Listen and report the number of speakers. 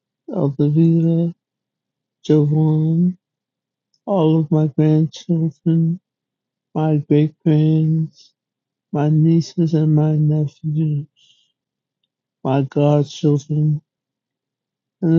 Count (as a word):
one